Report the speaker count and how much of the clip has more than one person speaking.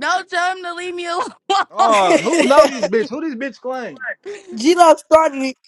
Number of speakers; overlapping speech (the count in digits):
3, about 14%